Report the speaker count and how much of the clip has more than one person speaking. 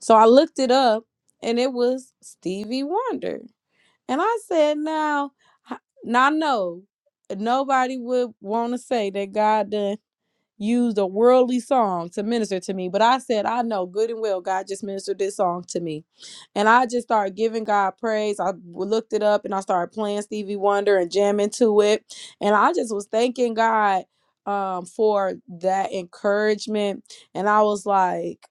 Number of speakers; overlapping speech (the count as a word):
one, no overlap